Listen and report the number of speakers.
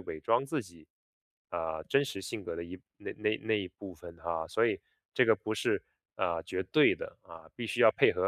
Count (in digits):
1